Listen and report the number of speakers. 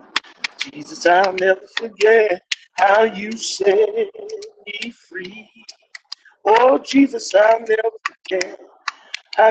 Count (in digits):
1